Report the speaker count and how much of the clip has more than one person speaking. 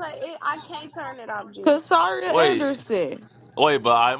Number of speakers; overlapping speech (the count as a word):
three, about 16%